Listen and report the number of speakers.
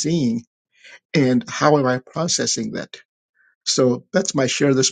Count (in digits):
1